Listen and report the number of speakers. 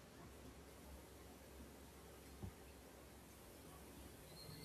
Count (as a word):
zero